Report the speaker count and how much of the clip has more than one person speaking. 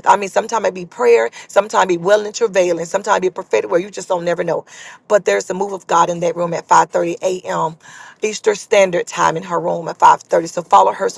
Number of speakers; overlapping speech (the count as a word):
one, no overlap